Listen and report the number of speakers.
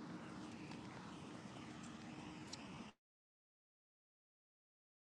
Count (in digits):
0